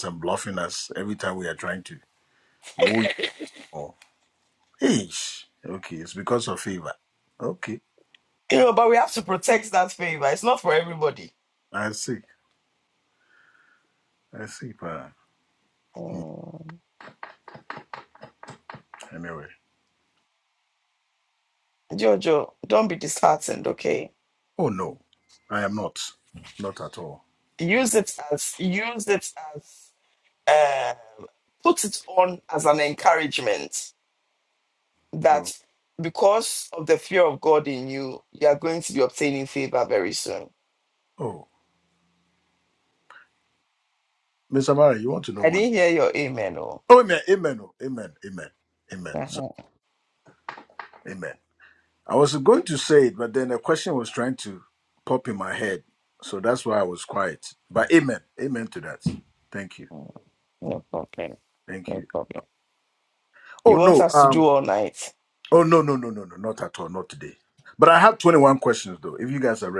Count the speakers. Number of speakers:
two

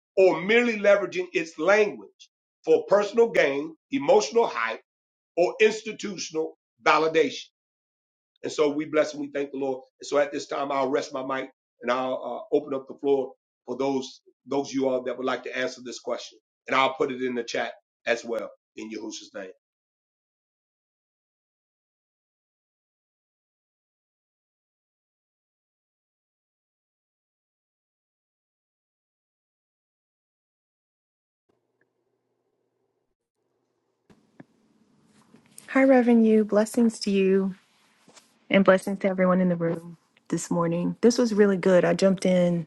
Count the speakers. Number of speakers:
two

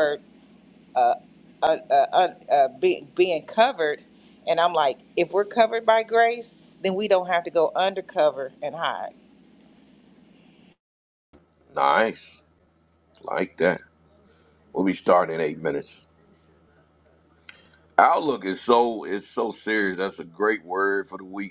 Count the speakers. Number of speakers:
two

